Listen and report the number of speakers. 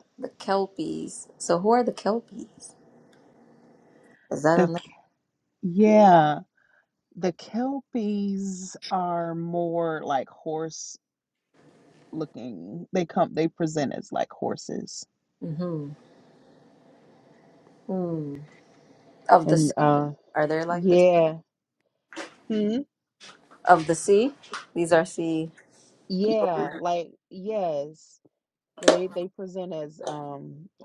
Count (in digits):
2